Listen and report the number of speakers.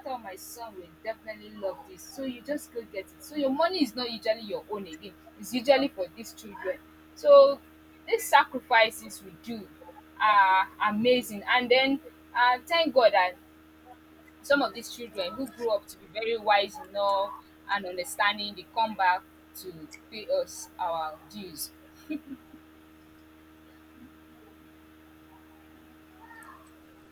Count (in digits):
1